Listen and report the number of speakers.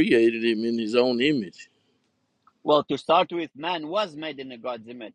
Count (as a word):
two